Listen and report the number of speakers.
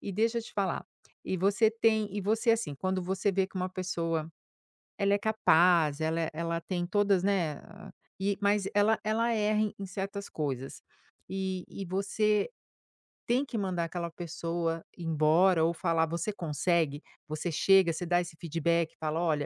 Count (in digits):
1